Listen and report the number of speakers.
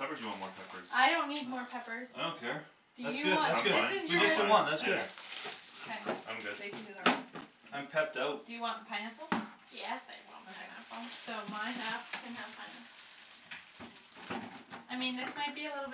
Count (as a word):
four